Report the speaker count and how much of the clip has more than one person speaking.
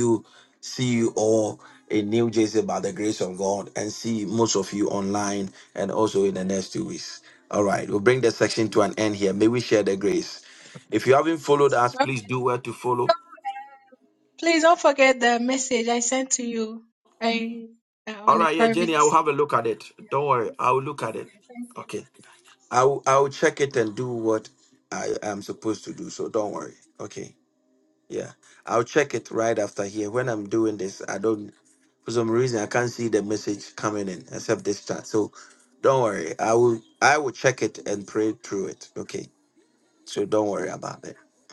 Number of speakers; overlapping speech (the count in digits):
2, about 2%